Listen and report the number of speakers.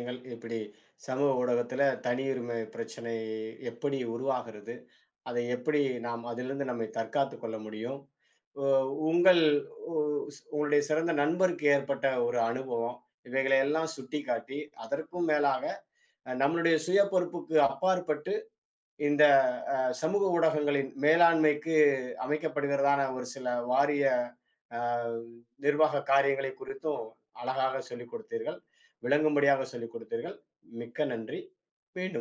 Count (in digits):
1